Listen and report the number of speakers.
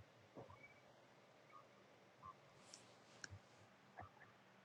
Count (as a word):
zero